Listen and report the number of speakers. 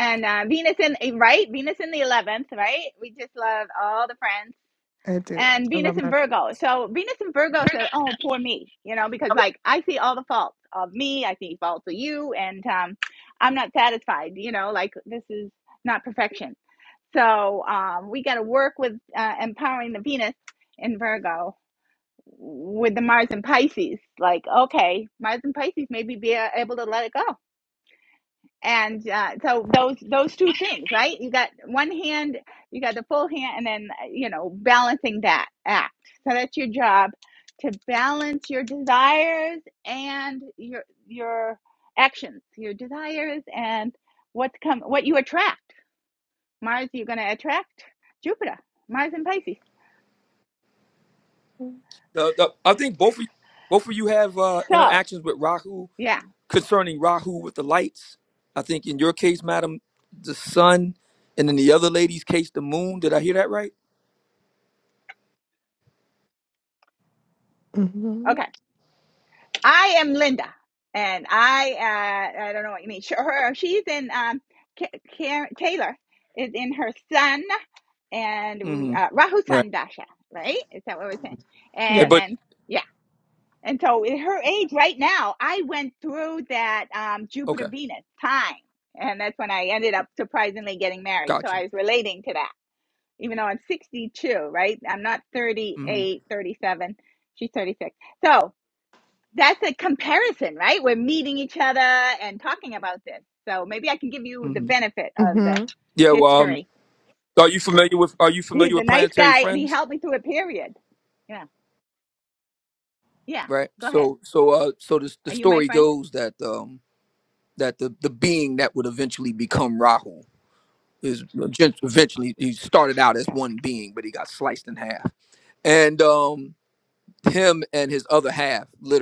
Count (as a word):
three